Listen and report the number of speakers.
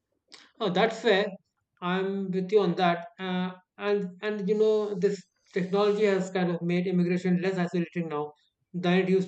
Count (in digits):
1